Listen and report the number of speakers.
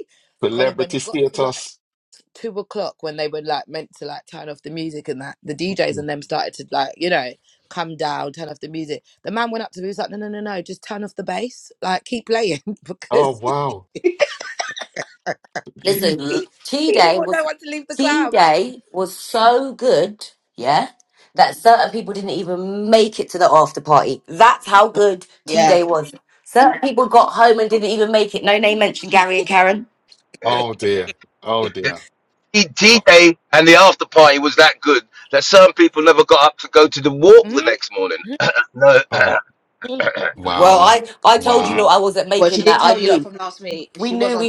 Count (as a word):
five